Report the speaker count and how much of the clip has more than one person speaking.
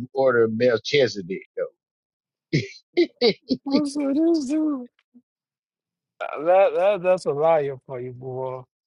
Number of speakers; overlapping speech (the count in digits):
2, no overlap